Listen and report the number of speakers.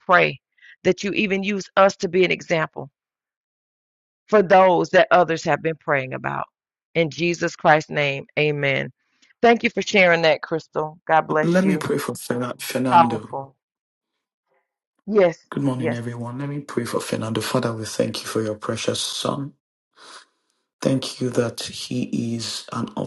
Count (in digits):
2